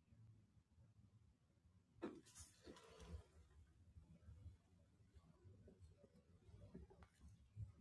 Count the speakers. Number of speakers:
0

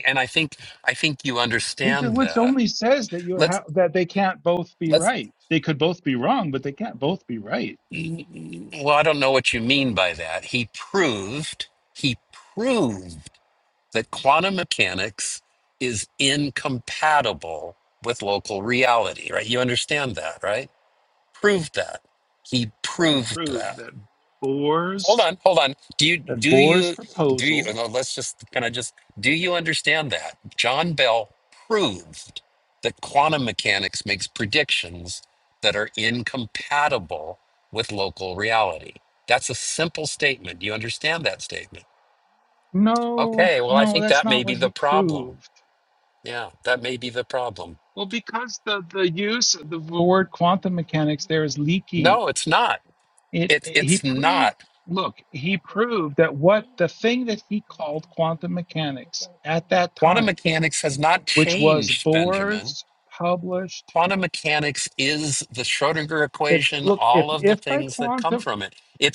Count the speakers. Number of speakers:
2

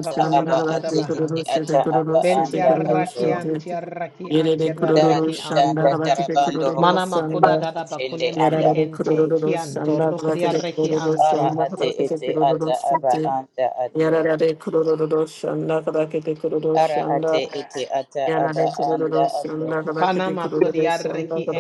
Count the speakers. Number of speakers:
3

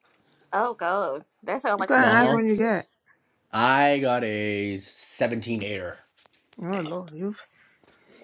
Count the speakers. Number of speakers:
3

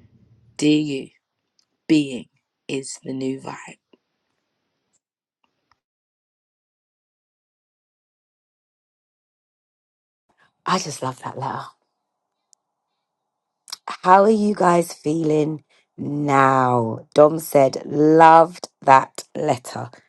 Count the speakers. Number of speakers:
2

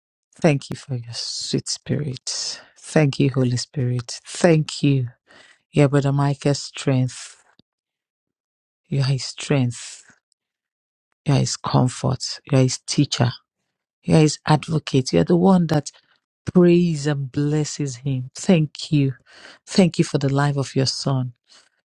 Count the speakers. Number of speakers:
1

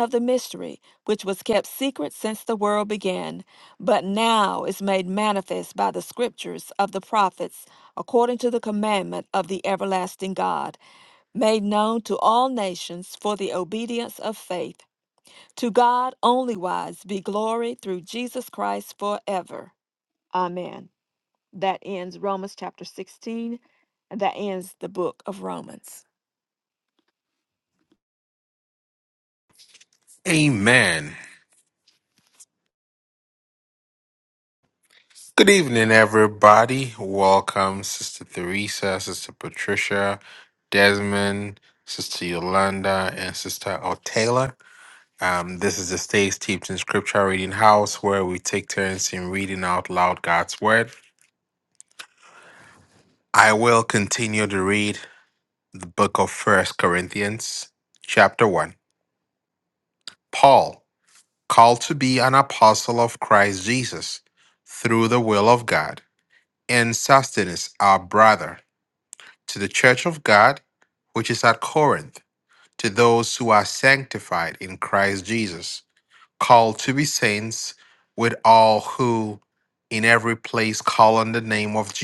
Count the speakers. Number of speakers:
2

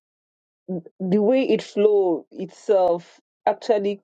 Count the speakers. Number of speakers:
1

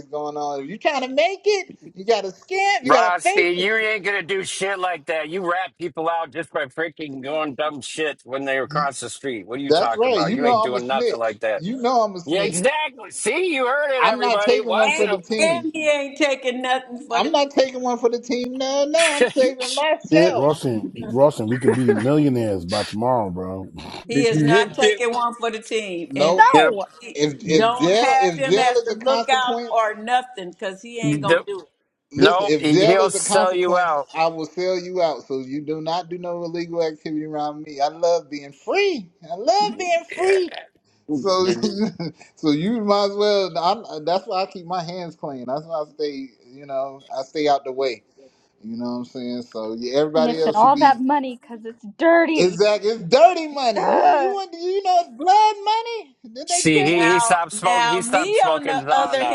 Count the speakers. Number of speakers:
5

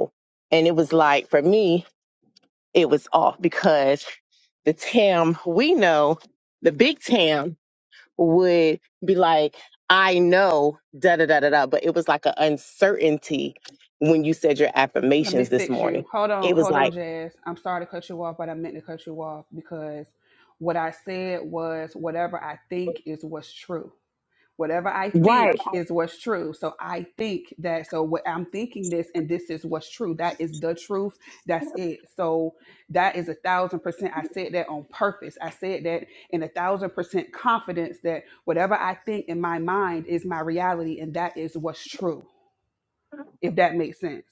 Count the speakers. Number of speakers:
2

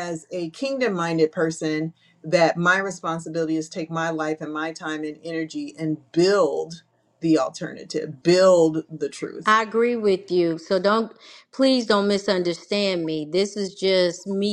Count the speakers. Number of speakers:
2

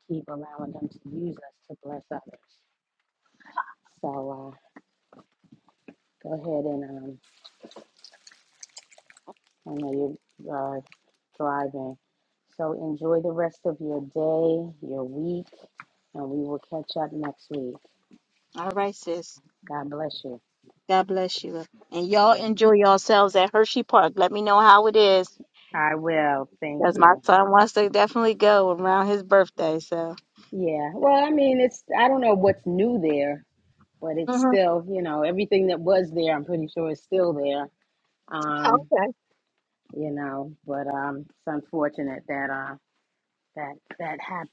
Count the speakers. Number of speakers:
2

